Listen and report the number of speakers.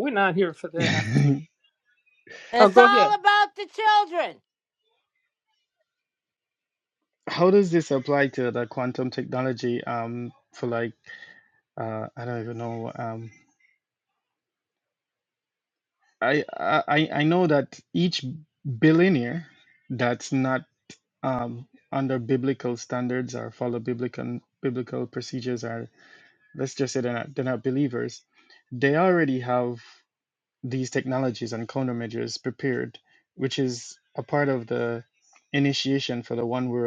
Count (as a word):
three